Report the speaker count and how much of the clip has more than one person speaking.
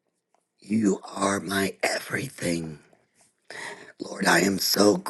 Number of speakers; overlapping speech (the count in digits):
1, no overlap